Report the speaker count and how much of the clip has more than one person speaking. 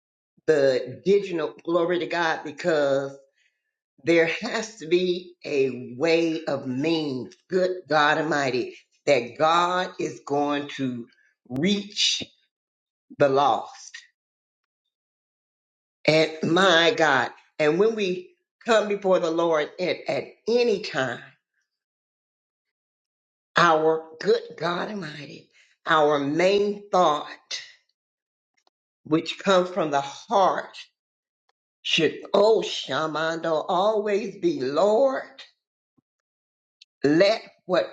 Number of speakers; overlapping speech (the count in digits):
1, no overlap